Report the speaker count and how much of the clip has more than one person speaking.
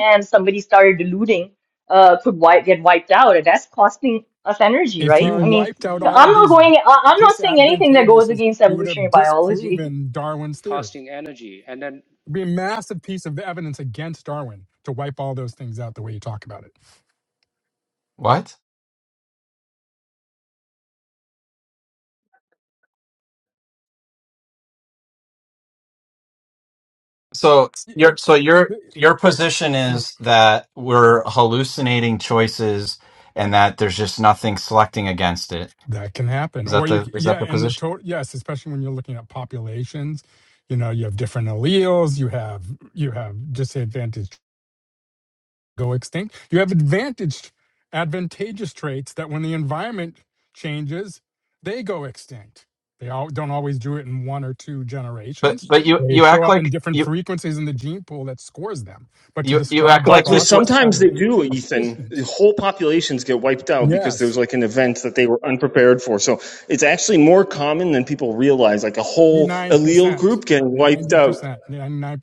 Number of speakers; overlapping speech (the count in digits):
5, about 16%